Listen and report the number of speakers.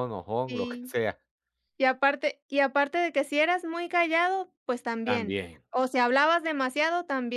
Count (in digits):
2